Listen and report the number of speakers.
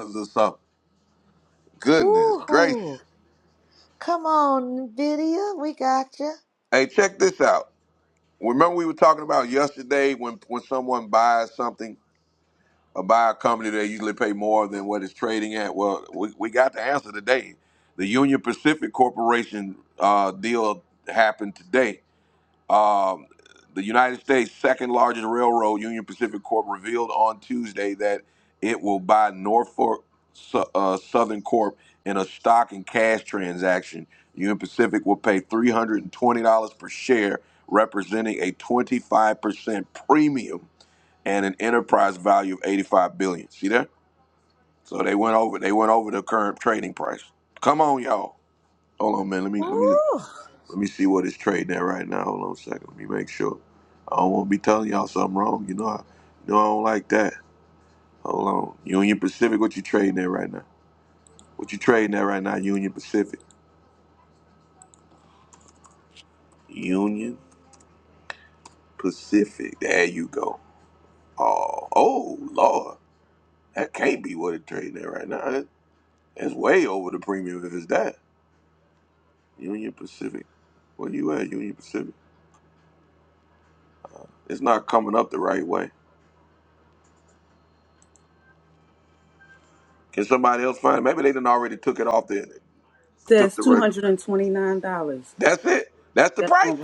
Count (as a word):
three